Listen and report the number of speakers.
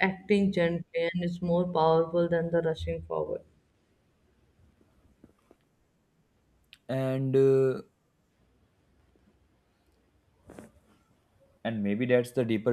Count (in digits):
2